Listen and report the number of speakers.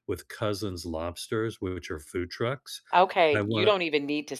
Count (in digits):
2